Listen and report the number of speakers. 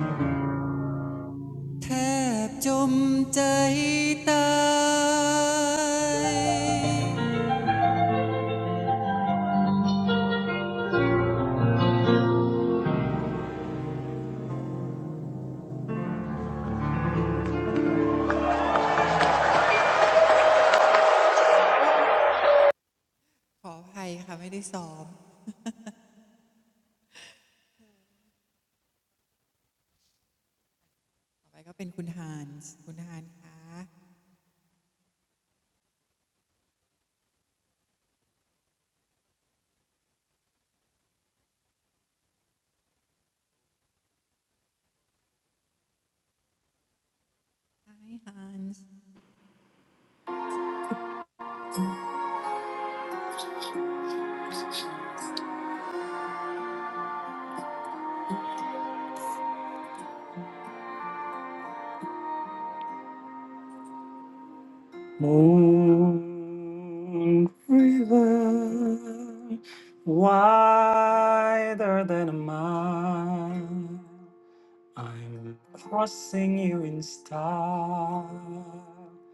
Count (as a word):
two